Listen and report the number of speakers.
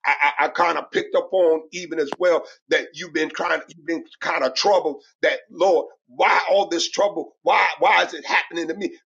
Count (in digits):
1